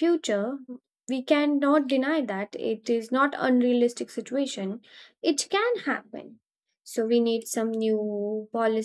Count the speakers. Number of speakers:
one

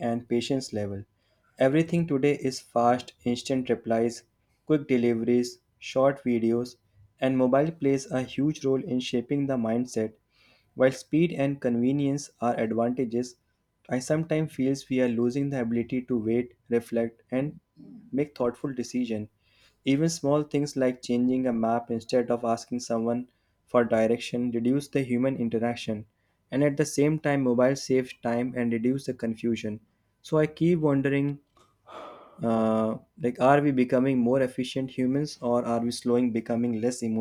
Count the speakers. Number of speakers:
one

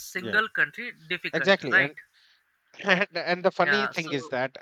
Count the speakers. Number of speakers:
two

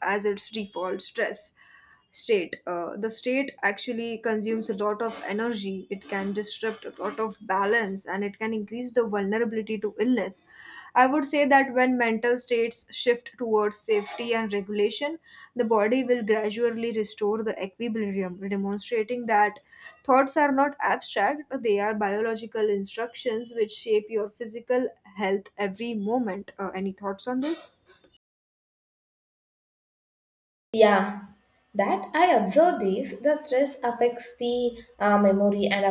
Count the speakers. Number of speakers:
two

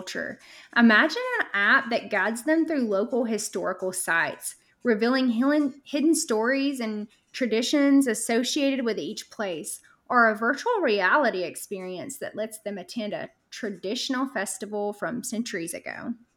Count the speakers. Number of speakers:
one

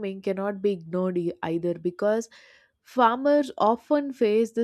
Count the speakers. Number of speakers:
one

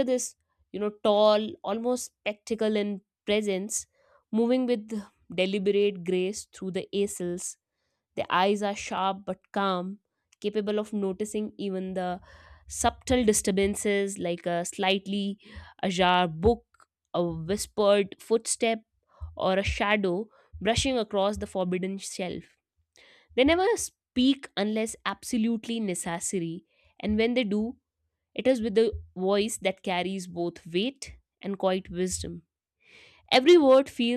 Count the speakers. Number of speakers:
one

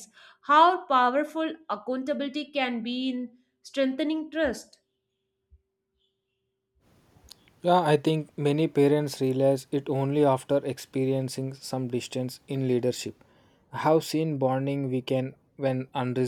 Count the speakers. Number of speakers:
two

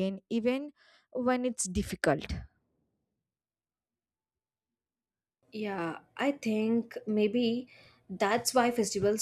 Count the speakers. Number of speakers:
two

